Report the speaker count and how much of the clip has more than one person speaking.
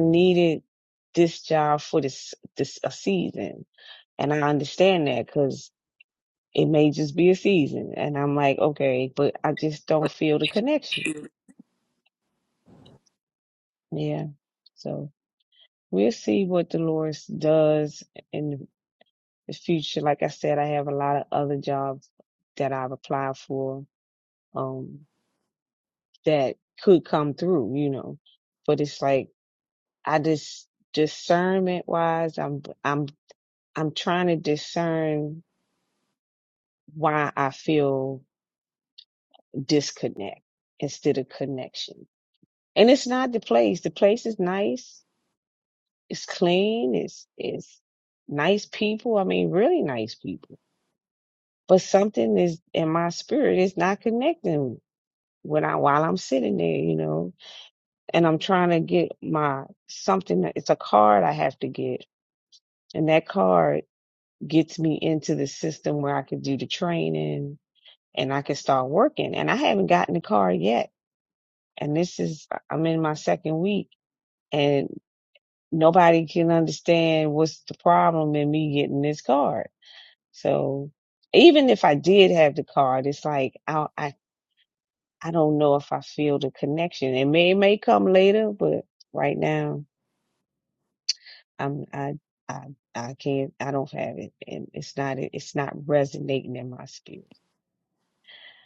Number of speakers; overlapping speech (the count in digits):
1, no overlap